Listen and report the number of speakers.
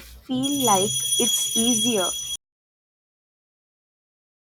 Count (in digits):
1